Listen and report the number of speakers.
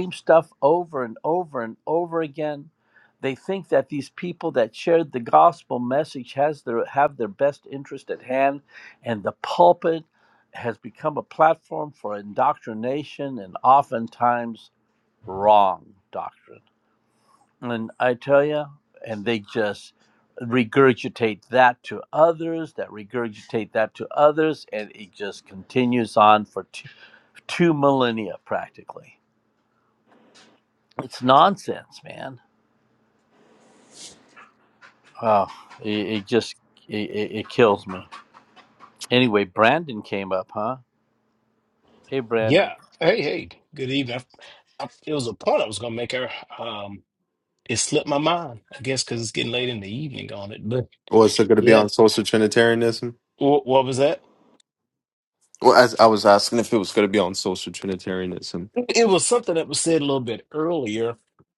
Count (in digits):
3